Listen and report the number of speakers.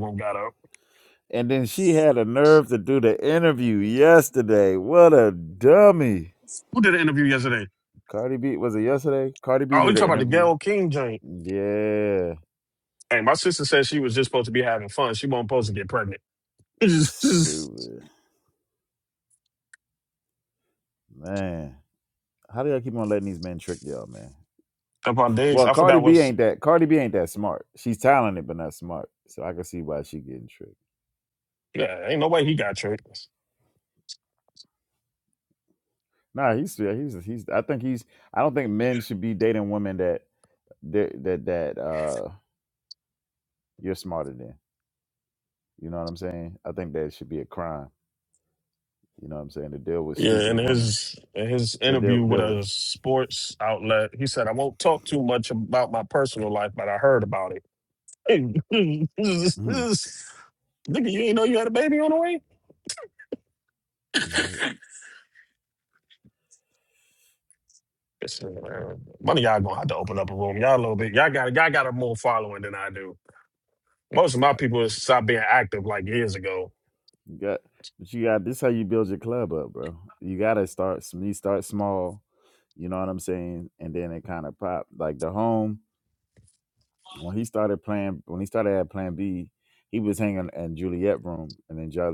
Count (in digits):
2